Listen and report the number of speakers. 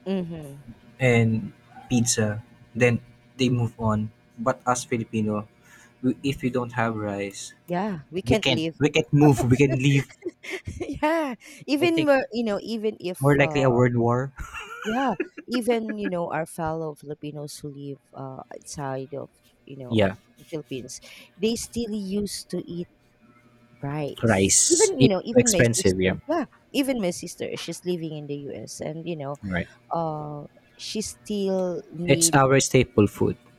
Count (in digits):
2